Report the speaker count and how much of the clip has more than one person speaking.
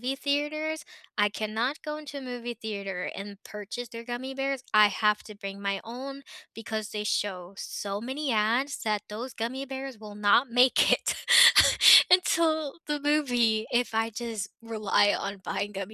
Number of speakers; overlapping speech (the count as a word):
one, no overlap